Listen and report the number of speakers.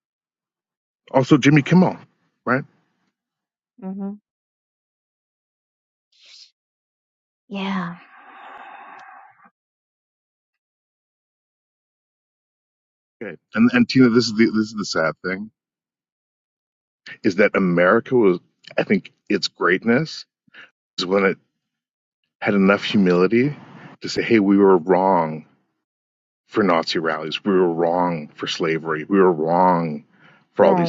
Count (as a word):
two